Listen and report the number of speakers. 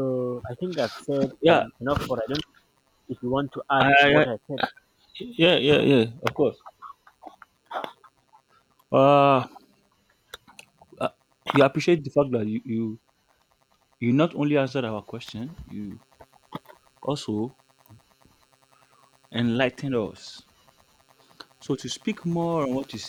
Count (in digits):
2